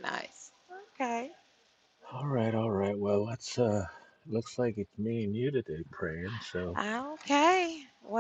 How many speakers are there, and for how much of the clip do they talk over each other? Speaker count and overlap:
2, no overlap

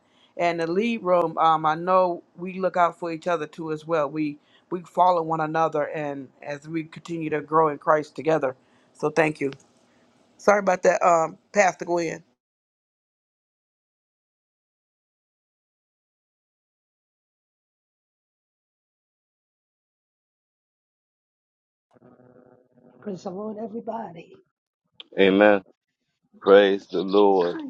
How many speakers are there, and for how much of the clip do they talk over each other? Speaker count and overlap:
3, about 1%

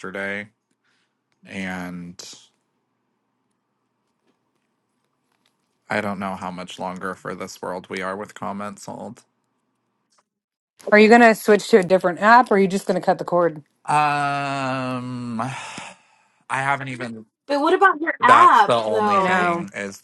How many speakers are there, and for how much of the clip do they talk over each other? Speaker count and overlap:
3, about 7%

